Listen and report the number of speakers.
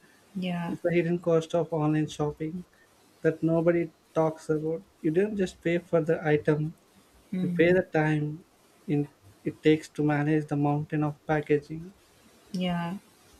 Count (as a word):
two